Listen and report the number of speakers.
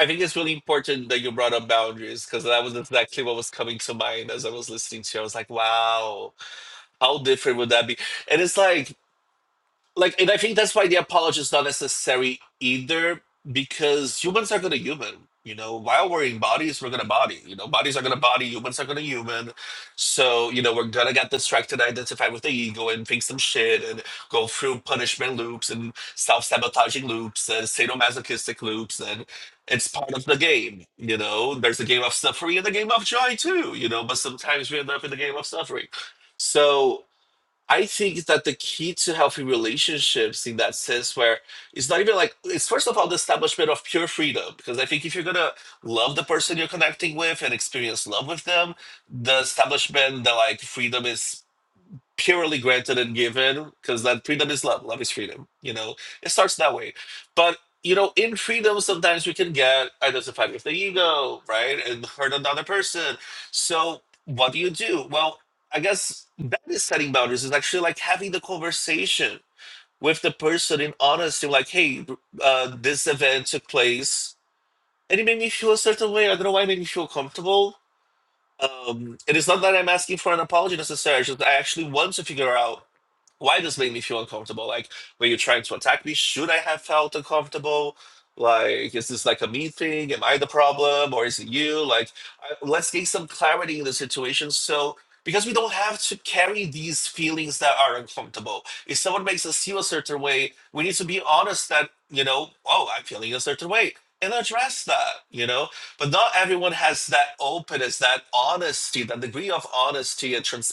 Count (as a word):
one